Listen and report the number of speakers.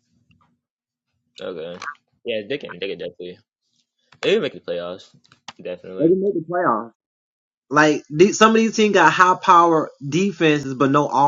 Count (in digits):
2